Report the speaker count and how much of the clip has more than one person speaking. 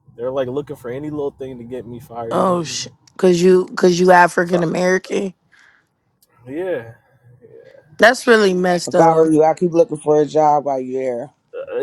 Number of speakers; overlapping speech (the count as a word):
three, about 9%